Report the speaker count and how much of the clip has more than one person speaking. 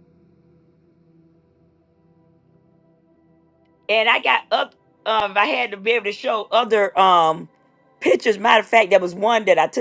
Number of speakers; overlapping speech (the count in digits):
1, no overlap